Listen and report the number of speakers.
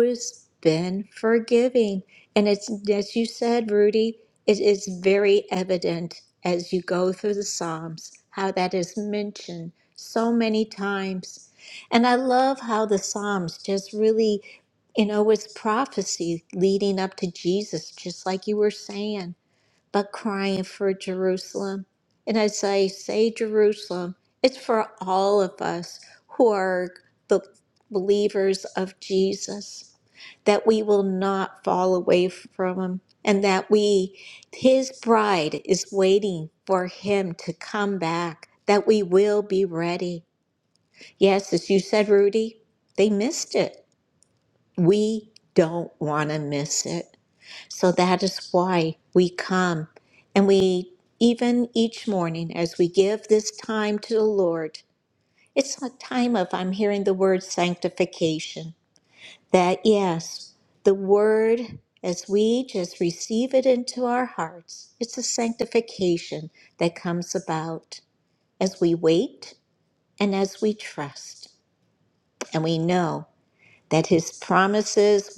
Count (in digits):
1